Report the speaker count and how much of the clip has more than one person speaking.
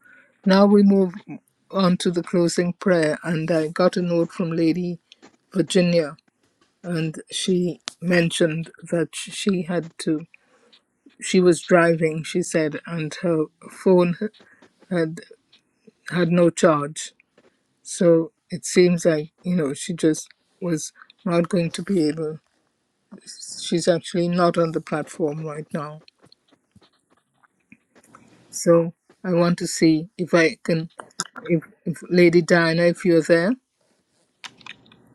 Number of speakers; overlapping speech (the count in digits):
1, no overlap